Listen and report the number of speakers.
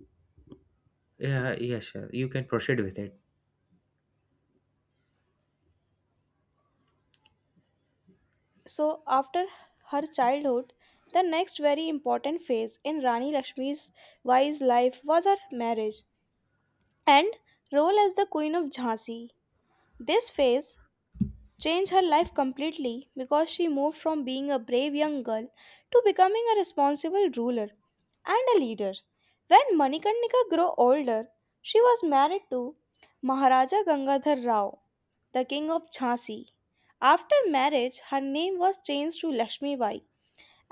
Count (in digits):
2